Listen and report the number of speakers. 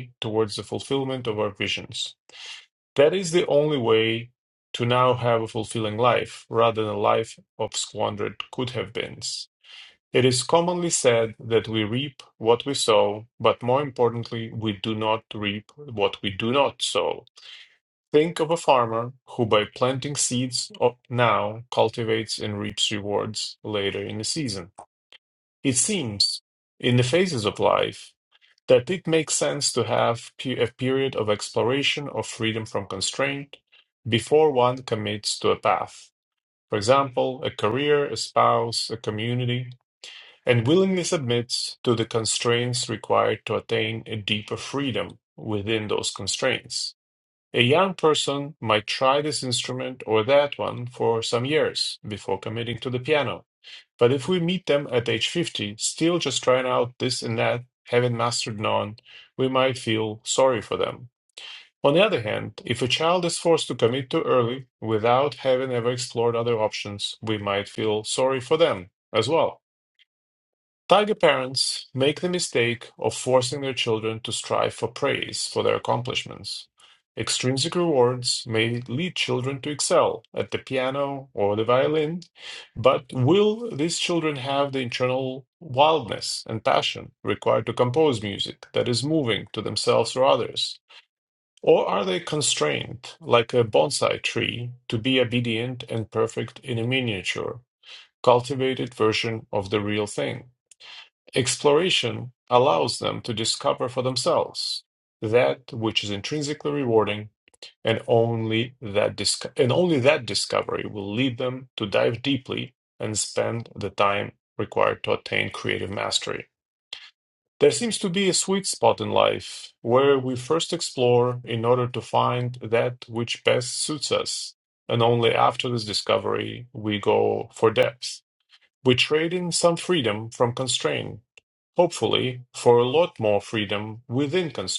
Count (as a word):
one